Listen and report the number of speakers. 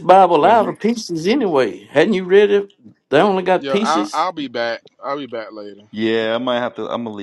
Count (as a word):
three